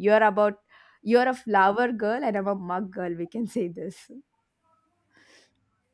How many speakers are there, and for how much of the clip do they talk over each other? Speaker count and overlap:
1, no overlap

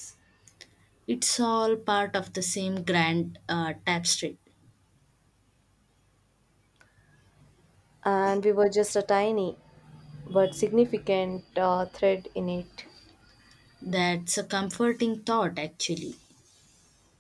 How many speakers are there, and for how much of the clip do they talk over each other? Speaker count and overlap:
2, no overlap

